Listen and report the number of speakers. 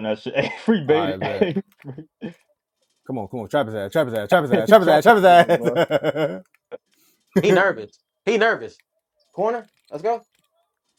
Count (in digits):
3